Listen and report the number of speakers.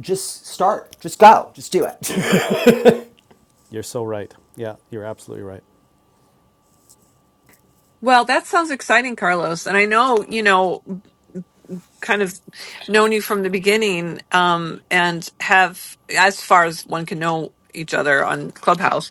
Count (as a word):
three